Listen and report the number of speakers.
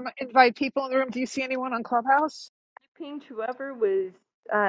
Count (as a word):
two